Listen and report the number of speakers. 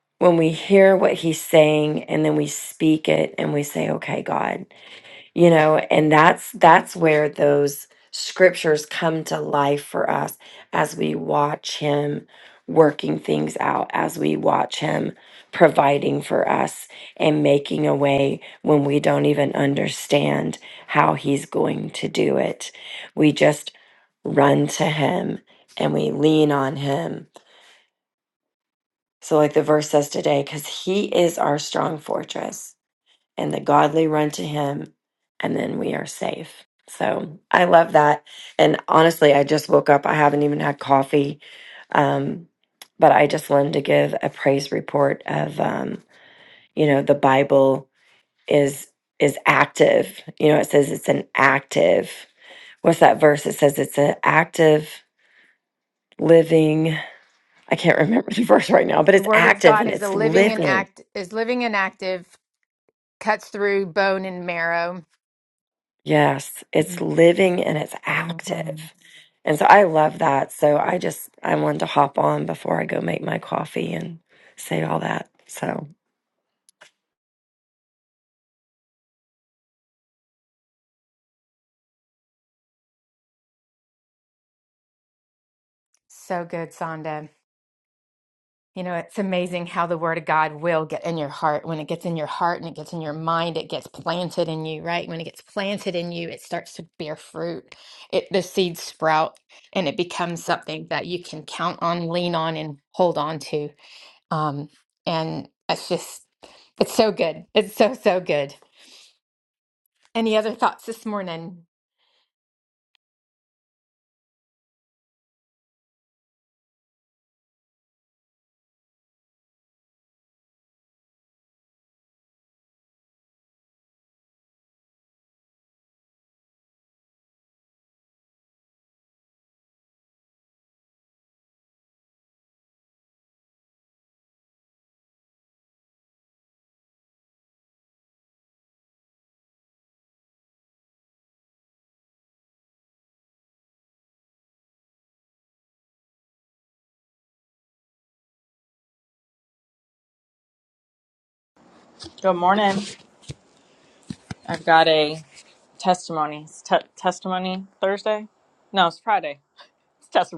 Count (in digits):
3